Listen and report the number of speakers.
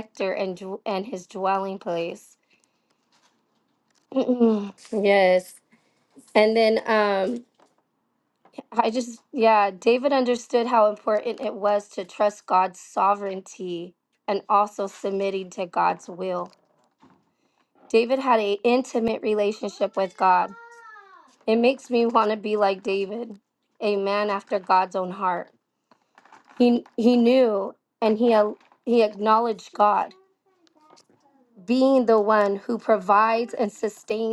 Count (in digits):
1